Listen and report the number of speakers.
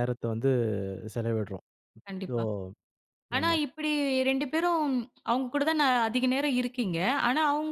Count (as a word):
two